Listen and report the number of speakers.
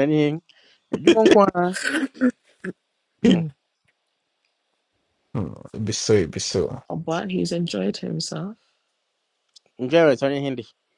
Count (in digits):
3